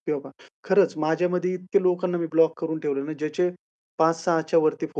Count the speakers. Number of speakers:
1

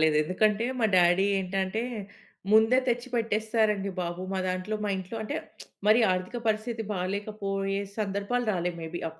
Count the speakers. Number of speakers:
1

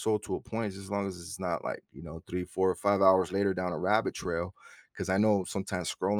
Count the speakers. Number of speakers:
1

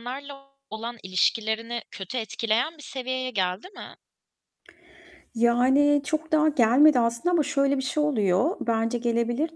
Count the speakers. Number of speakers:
2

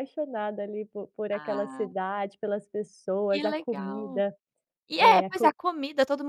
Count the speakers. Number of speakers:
2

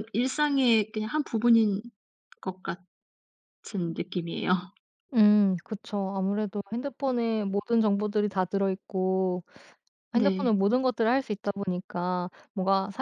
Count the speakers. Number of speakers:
2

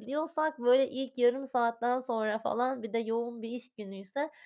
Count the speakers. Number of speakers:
1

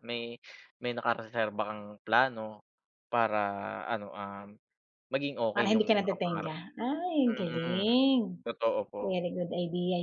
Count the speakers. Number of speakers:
2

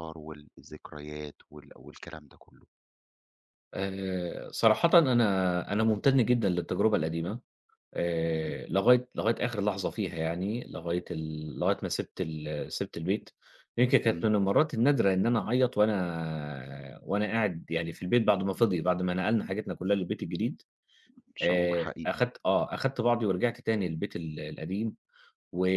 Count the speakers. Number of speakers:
2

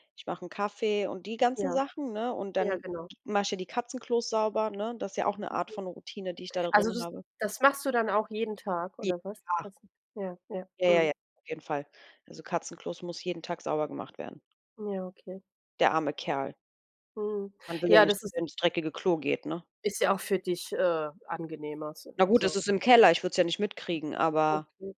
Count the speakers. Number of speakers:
2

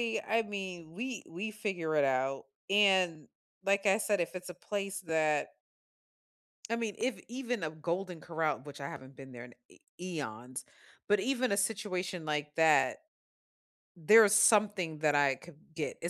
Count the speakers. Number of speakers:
1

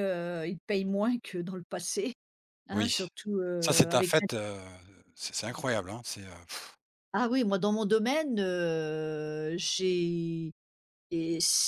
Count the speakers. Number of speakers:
2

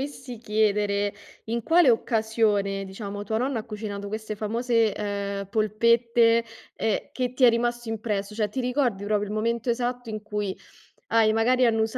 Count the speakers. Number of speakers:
1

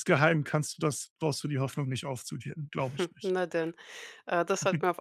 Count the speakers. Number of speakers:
2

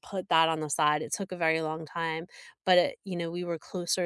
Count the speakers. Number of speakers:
1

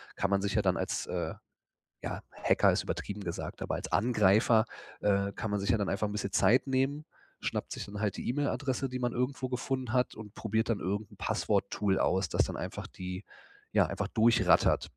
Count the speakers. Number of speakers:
1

